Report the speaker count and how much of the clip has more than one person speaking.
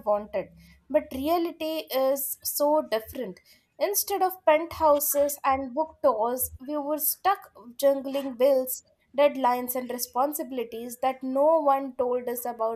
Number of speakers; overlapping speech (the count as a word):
one, no overlap